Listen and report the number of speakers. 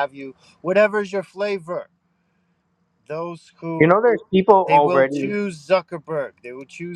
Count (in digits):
2